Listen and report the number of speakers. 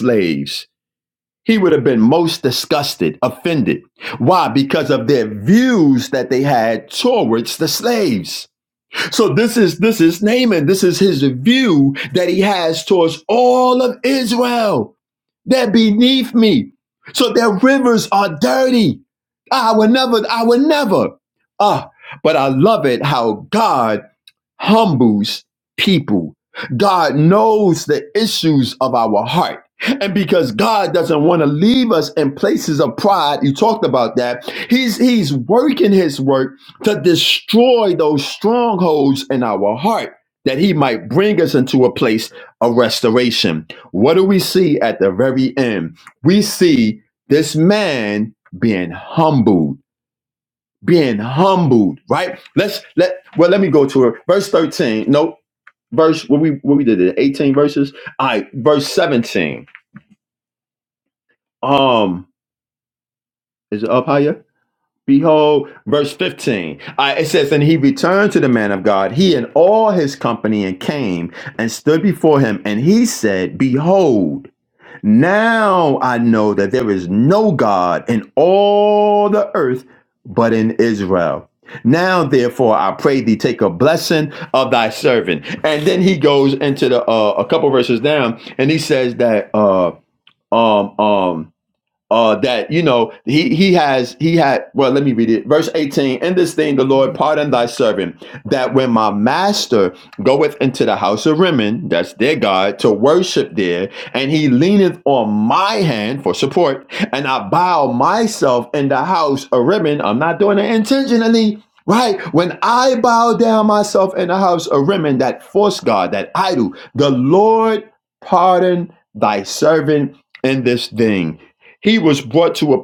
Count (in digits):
1